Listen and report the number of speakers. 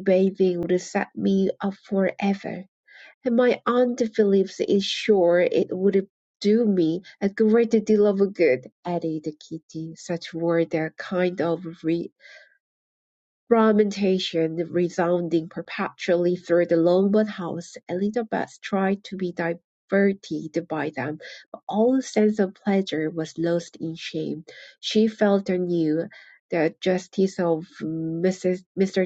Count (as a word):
one